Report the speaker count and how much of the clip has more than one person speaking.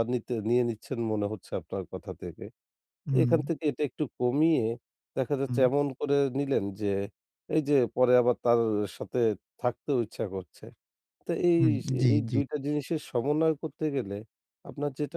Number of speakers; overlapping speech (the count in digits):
2, about 6%